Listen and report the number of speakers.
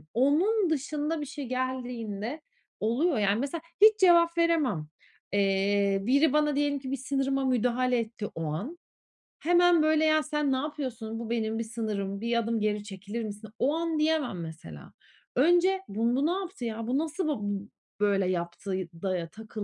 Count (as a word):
one